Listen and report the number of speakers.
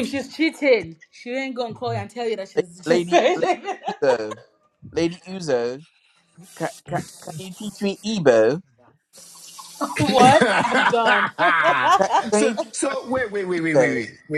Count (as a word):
three